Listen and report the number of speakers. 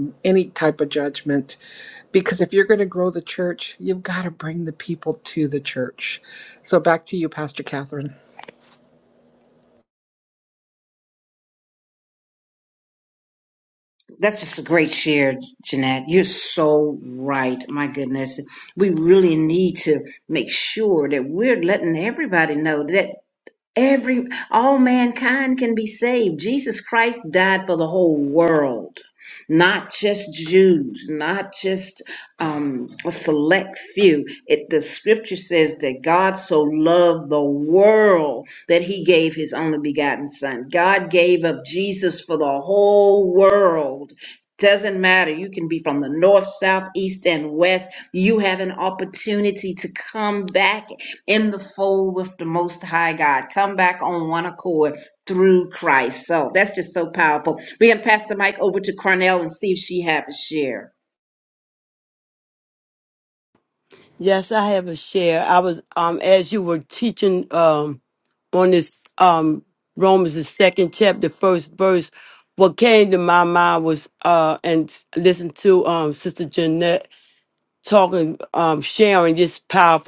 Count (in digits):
3